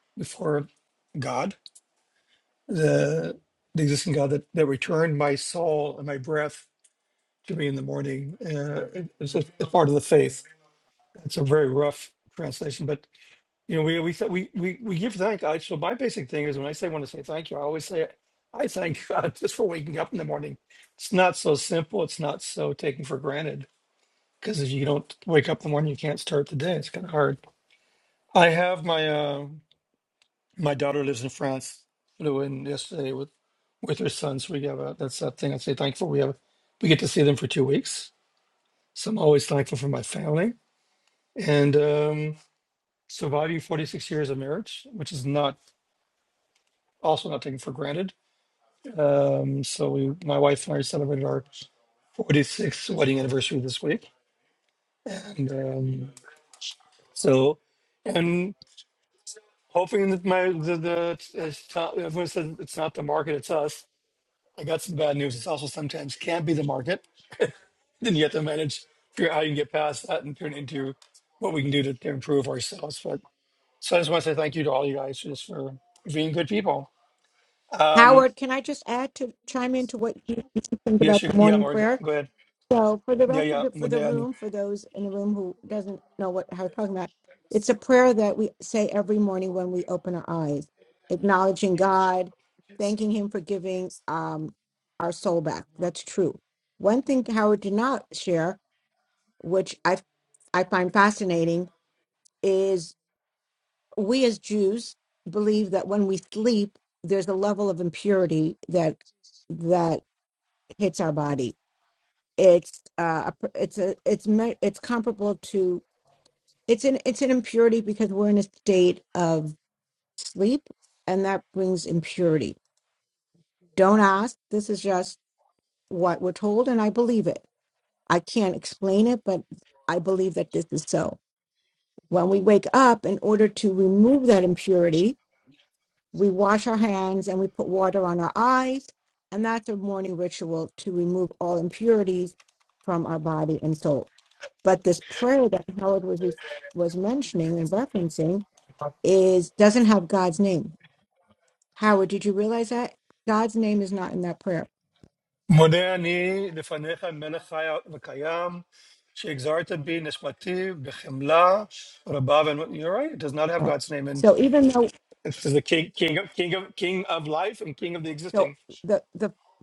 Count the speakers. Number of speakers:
2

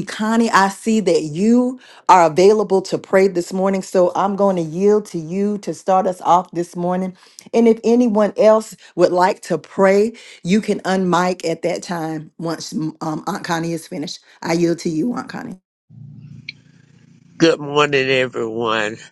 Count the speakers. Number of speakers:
2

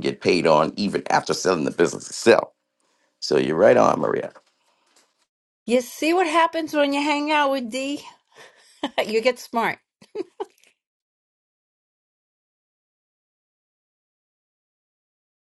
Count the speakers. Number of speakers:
2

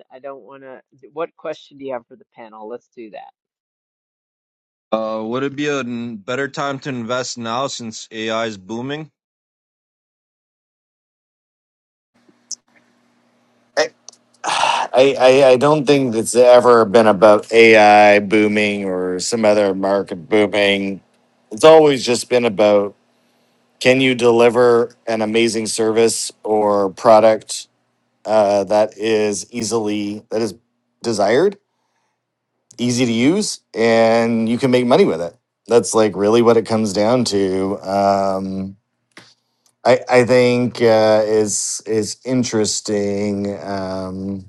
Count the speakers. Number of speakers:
3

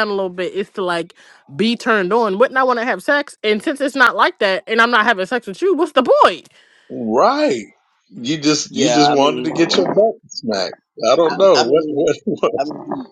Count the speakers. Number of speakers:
3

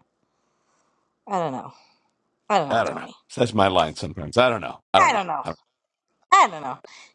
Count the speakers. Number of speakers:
2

